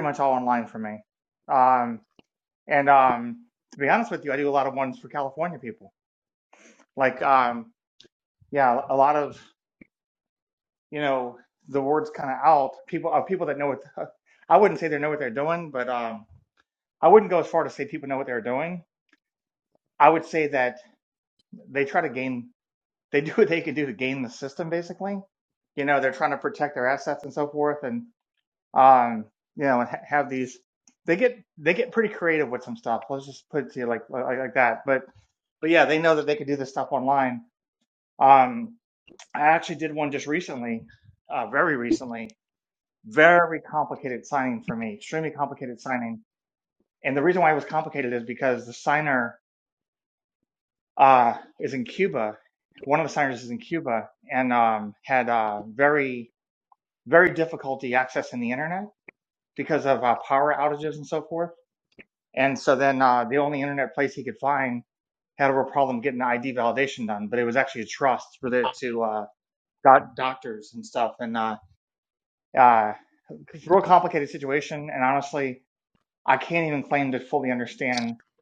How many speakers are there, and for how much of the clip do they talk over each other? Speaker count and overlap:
1, no overlap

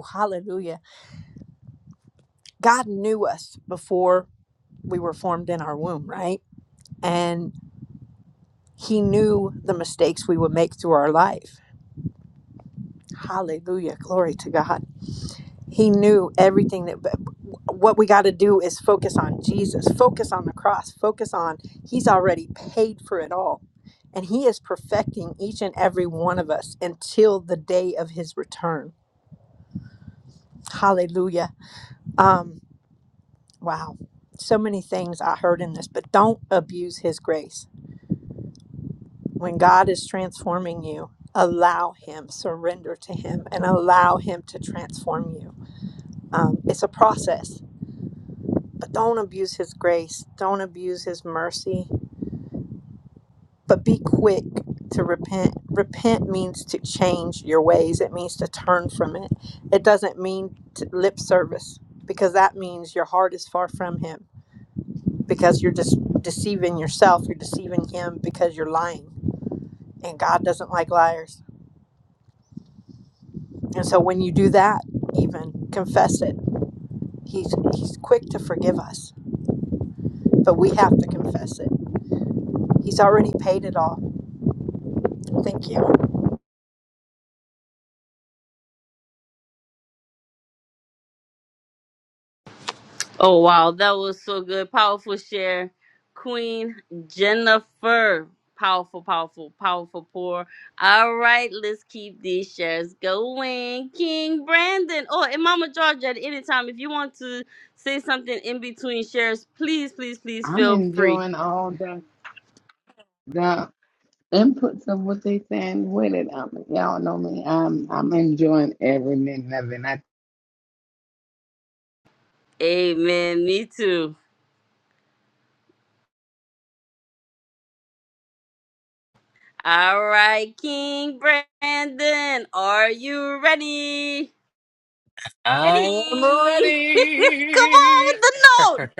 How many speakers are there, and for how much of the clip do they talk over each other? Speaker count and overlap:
4, about 1%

